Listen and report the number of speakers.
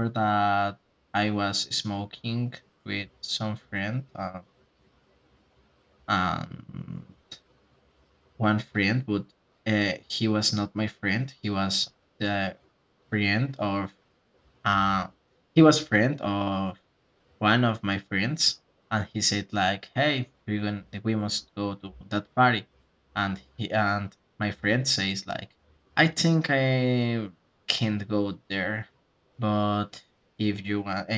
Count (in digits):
1